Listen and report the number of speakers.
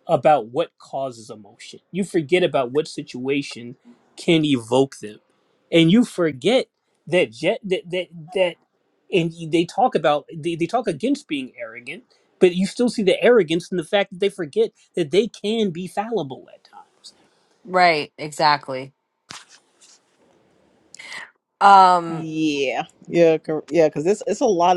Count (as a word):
three